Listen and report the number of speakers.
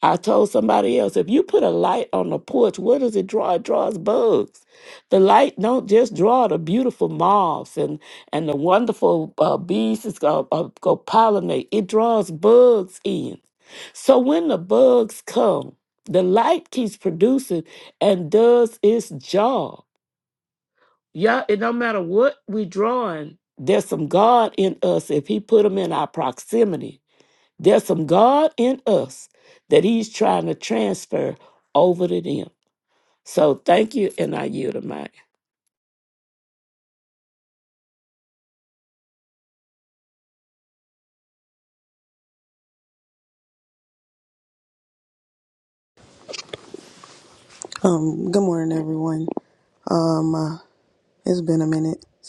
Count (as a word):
two